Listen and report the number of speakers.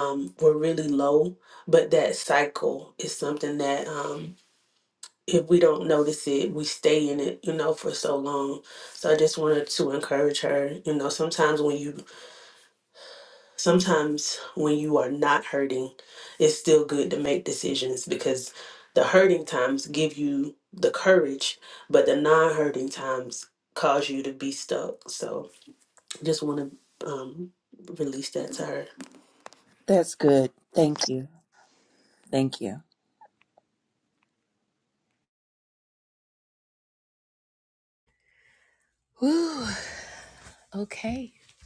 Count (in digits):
3